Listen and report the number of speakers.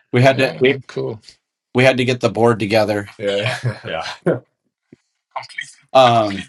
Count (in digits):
2